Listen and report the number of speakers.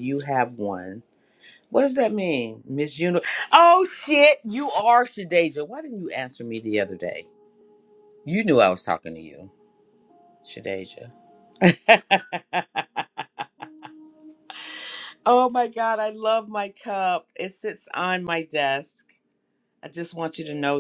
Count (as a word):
one